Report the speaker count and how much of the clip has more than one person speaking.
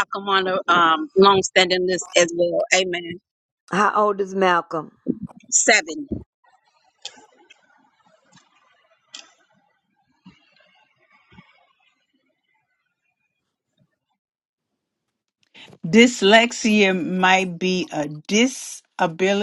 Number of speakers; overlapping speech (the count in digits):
3, no overlap